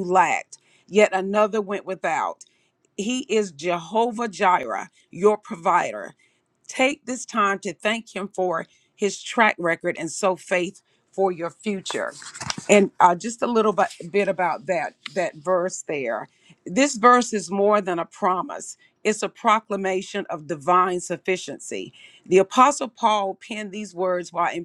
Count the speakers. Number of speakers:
1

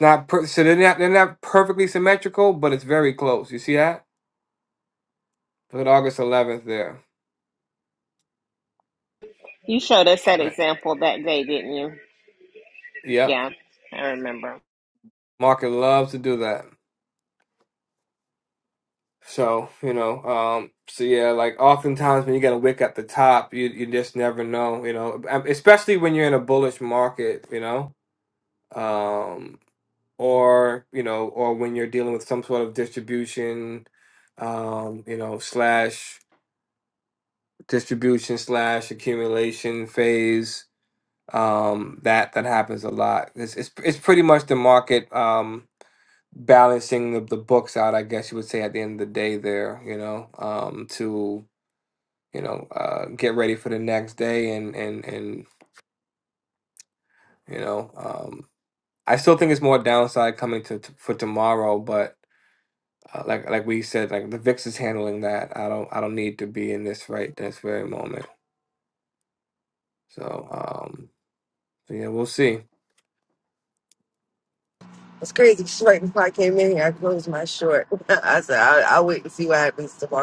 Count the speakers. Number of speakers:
3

